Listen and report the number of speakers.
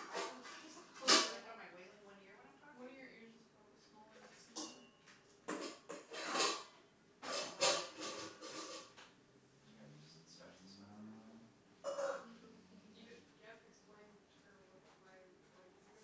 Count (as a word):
four